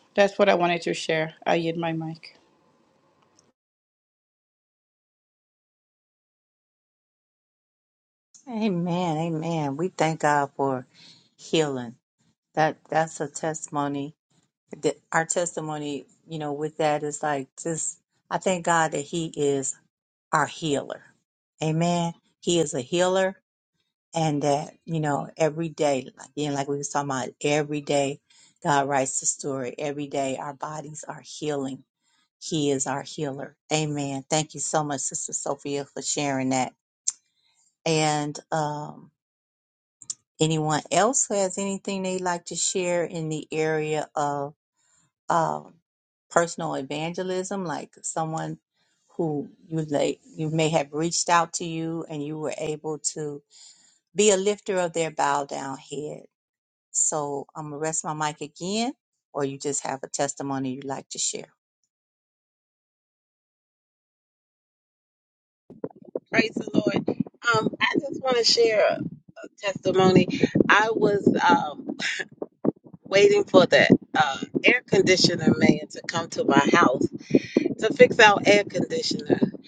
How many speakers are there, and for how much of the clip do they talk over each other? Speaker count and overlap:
3, no overlap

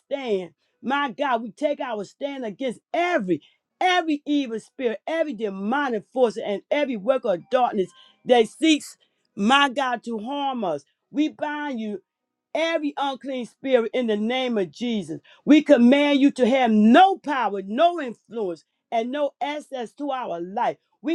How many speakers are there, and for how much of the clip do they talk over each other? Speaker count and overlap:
1, no overlap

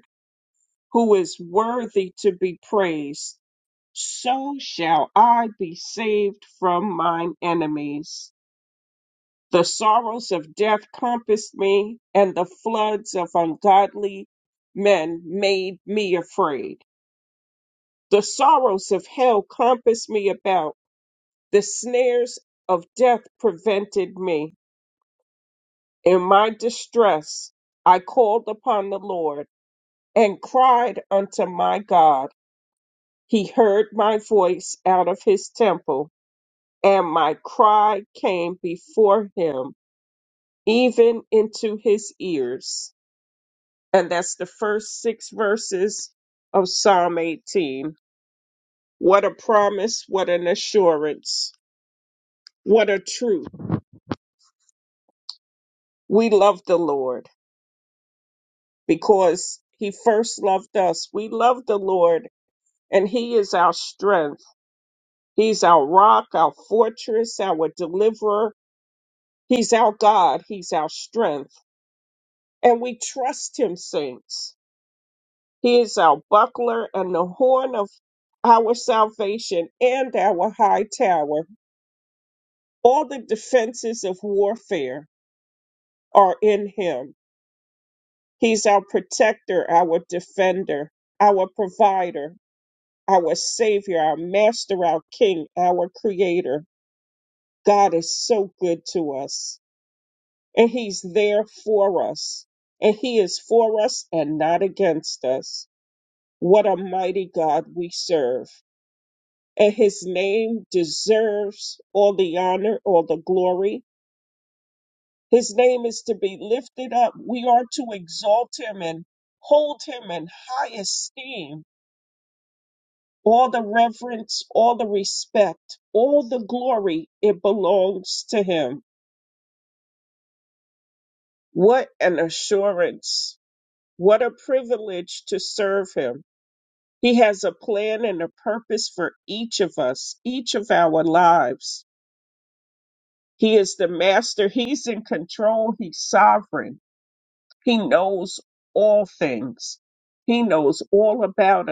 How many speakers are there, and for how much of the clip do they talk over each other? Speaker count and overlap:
1, no overlap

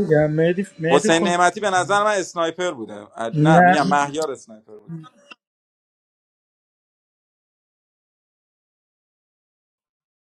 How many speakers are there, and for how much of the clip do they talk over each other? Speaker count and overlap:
2, about 11%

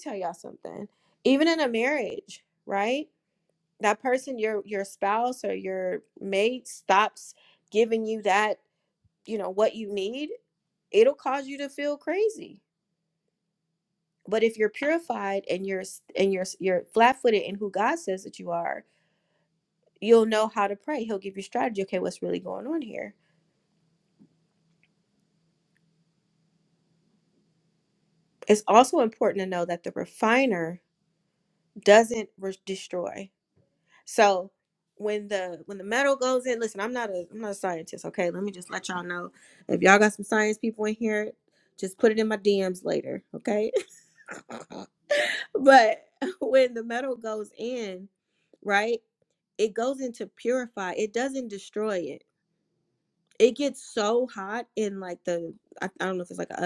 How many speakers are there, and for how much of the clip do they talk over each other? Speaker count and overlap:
1, no overlap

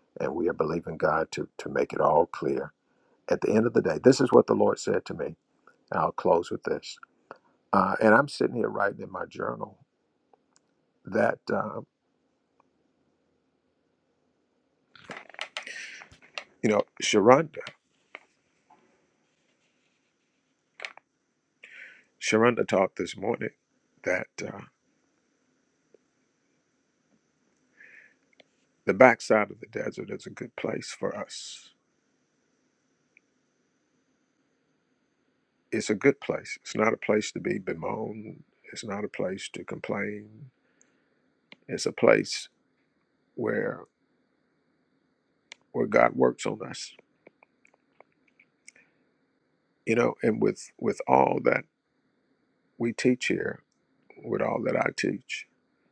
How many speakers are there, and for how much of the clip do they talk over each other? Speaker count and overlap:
1, no overlap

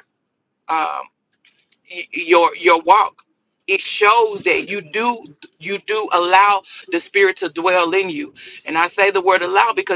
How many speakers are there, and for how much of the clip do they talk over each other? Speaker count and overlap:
1, no overlap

